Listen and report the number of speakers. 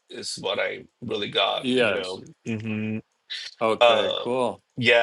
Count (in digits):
2